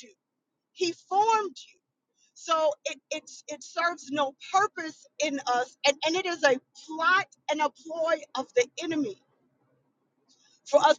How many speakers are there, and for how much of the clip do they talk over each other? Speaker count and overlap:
one, no overlap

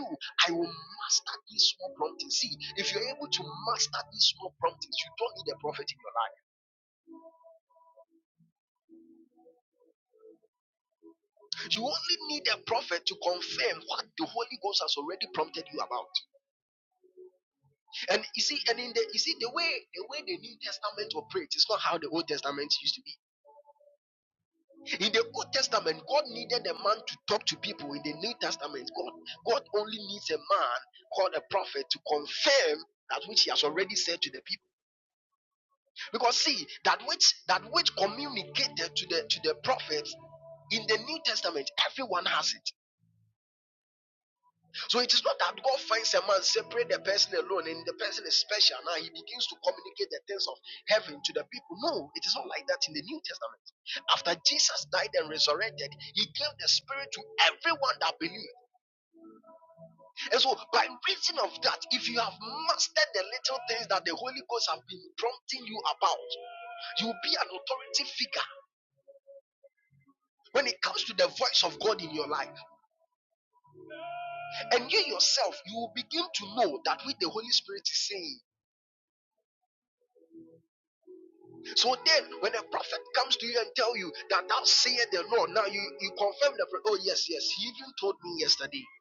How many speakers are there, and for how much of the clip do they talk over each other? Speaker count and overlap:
one, no overlap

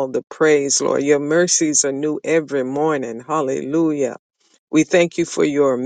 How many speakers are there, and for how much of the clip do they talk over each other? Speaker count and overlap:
one, no overlap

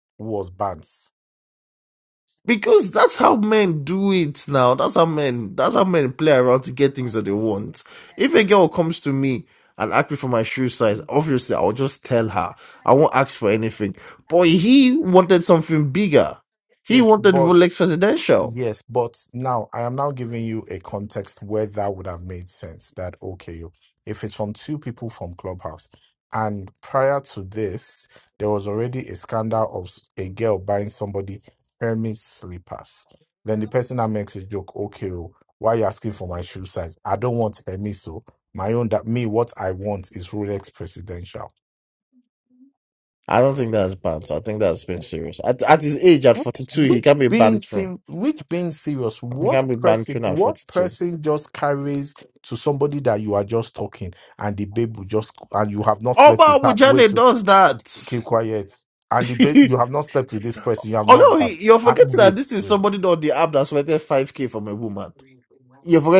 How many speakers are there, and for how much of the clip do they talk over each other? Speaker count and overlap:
two, about 9%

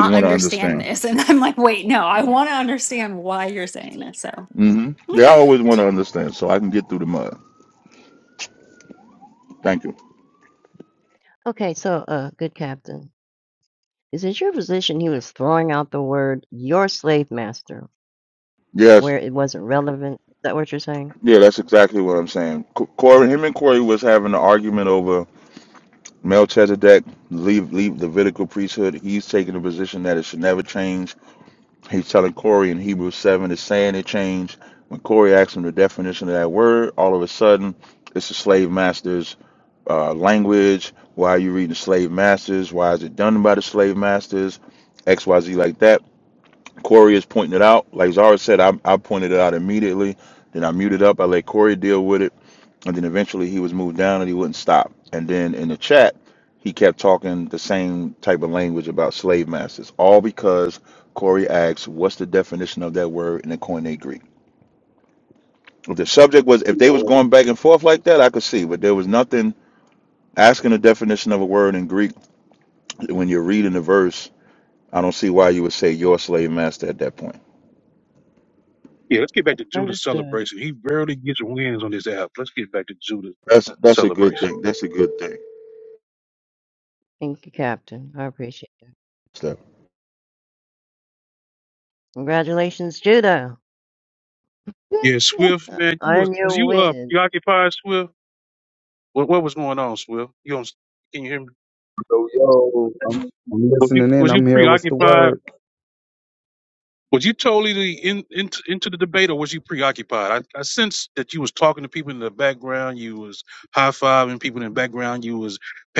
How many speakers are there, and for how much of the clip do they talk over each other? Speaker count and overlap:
five, about 5%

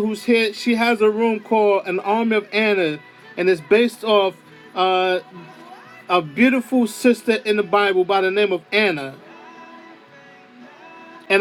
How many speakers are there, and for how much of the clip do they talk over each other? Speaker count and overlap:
one, no overlap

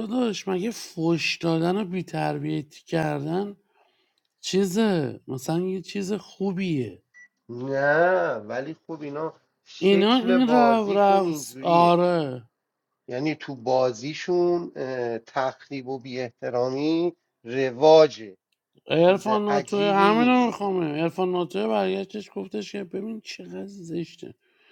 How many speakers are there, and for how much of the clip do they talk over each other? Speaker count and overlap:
two, about 13%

